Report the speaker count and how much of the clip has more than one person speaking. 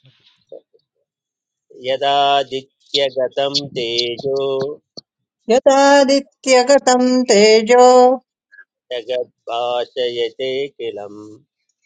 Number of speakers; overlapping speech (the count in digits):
2, no overlap